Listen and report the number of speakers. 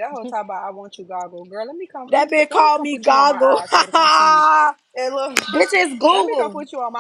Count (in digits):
2